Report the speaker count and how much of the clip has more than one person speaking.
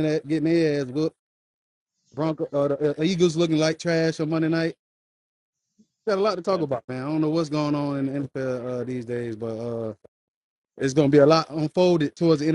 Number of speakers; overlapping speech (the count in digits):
1, no overlap